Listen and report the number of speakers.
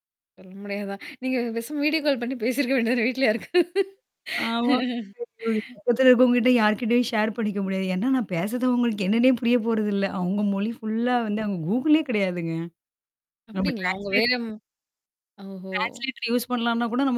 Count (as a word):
two